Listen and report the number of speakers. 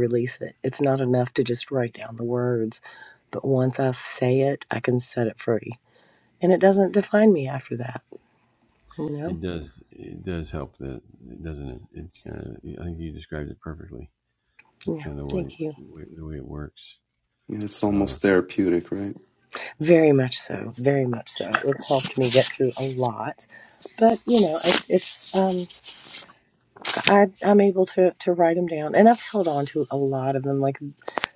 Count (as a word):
three